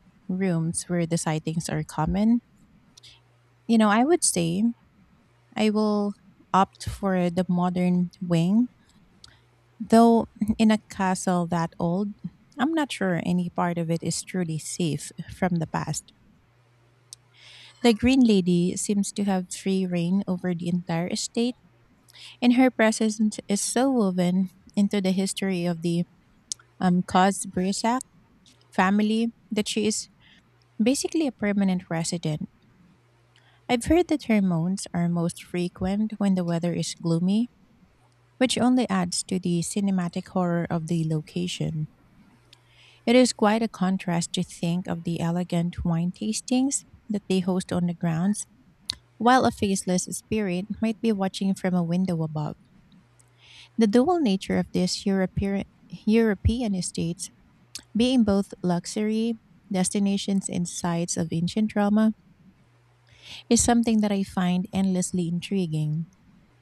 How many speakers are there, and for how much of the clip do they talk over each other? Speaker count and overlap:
one, no overlap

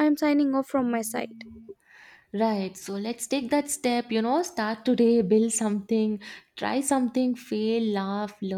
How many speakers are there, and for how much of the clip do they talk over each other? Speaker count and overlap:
two, no overlap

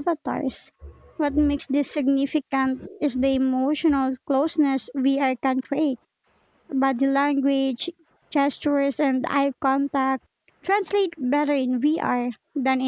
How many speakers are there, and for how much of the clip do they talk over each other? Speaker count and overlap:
one, no overlap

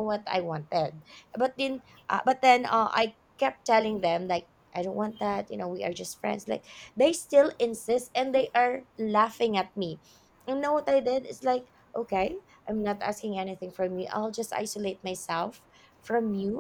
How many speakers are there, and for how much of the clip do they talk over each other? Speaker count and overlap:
one, no overlap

